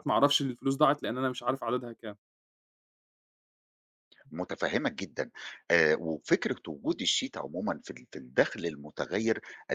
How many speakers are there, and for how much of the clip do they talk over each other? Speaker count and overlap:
two, no overlap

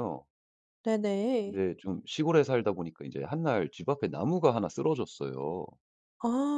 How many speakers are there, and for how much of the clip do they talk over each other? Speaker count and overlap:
two, about 1%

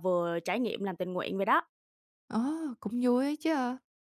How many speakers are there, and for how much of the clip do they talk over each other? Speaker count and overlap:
two, no overlap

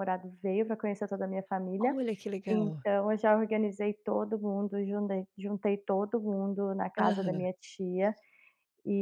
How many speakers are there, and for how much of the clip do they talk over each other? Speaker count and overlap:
two, about 10%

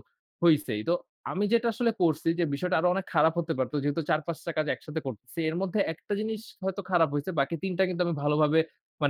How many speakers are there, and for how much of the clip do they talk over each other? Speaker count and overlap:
one, no overlap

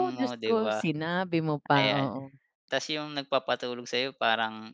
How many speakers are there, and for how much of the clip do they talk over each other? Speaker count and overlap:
two, about 26%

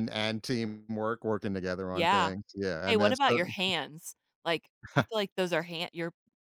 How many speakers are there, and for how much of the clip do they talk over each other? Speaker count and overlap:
two, about 16%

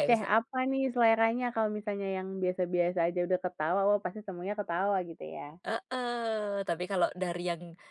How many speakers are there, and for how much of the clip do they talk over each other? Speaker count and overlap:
two, about 4%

